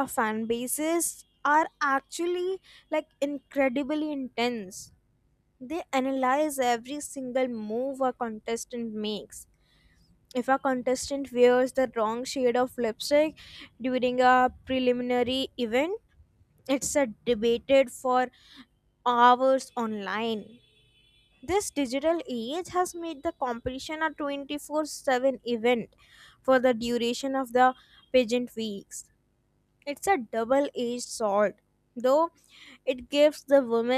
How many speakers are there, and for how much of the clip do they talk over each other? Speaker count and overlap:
one, no overlap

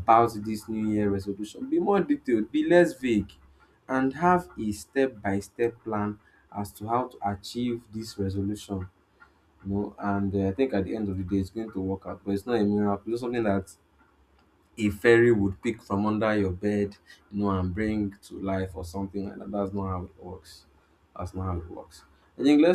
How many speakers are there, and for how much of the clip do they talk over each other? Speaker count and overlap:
one, no overlap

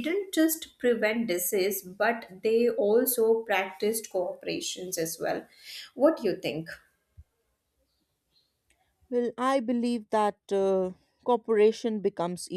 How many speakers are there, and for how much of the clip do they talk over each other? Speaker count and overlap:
two, no overlap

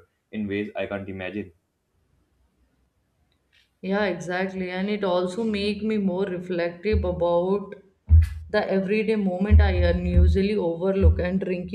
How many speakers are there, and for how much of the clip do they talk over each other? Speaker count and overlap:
two, no overlap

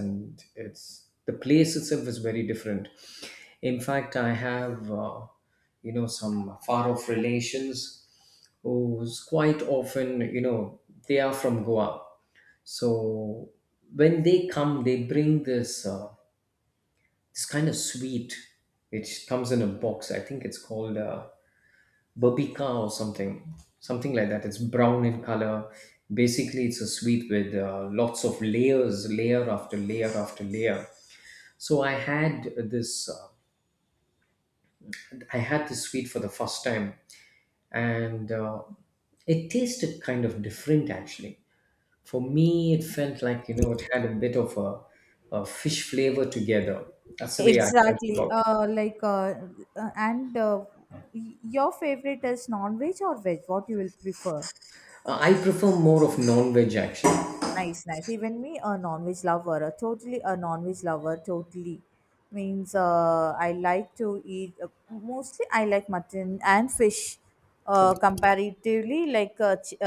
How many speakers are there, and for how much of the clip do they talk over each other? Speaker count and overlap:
two, about 2%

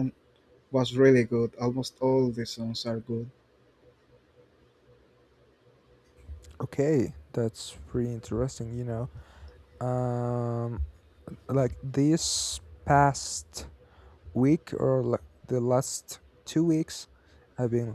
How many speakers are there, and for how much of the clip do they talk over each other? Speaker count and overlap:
two, no overlap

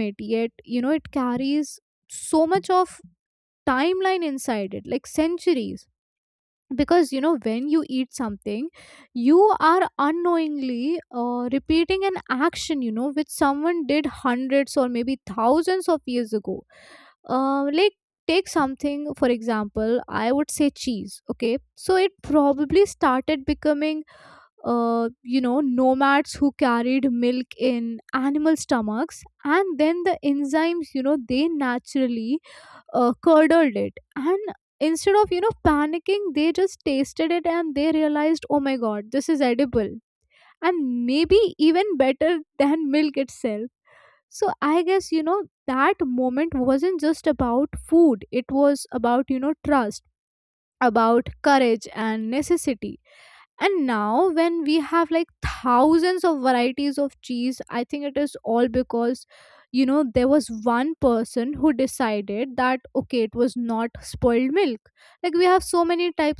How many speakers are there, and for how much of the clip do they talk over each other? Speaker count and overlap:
one, no overlap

